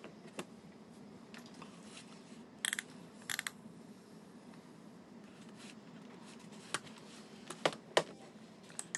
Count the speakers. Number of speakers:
0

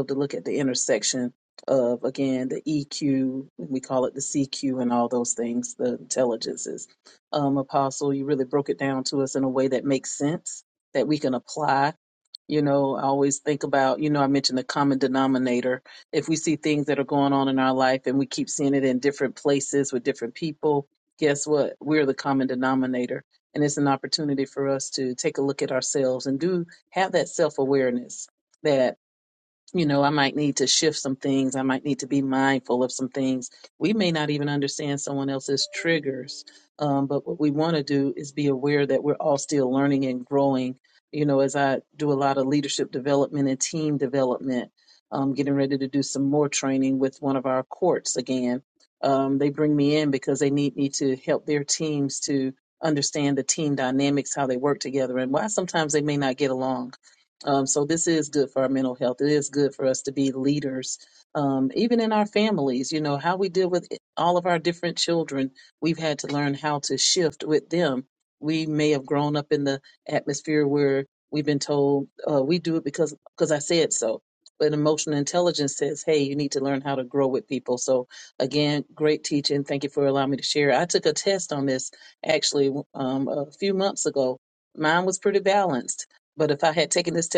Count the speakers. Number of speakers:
1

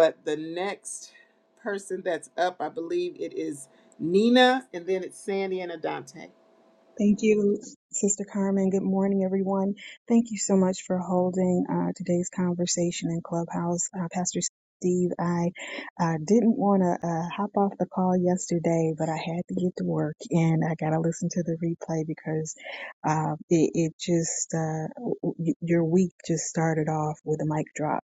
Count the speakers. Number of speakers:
2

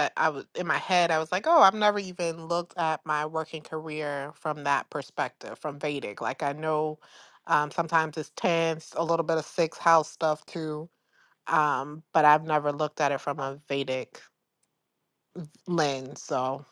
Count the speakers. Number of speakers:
1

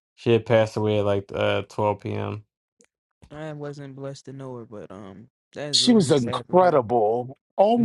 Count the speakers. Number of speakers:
3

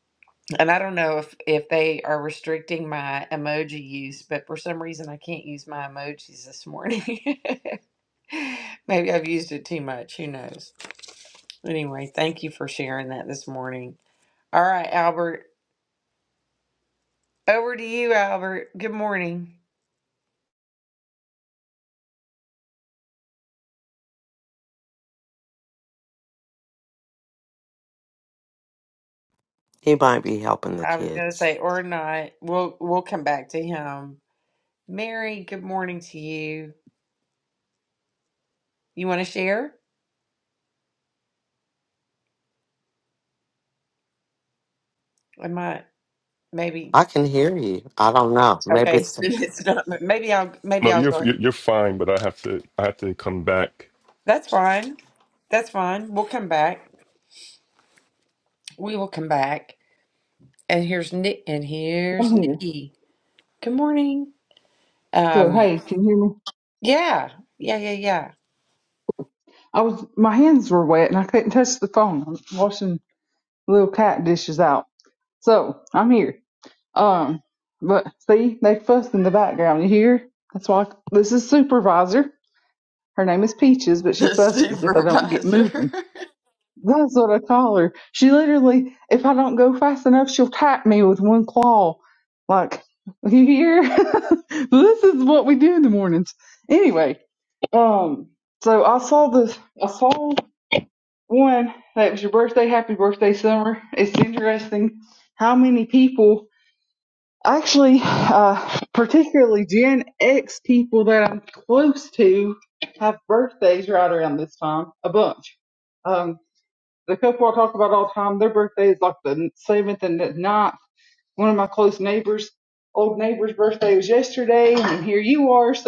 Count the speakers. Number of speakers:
4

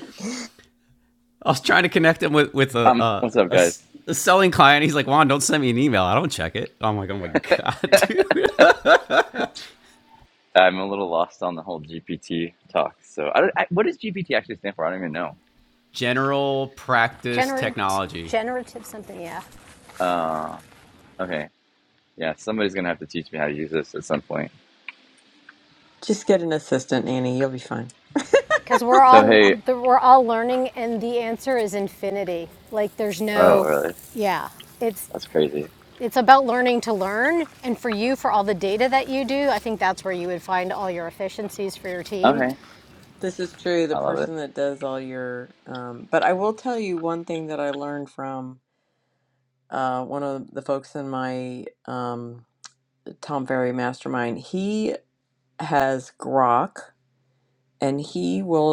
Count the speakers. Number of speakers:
4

